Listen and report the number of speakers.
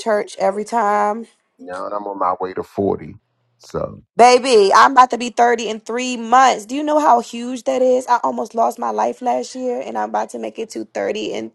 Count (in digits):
2